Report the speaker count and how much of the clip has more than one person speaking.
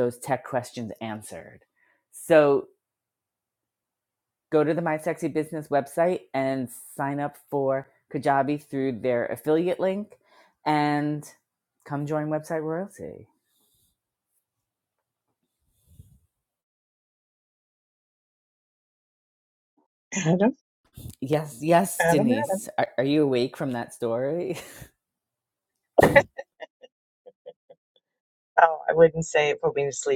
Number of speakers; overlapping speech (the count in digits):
2, about 1%